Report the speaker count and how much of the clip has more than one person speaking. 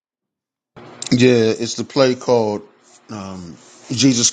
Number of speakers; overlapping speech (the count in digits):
1, no overlap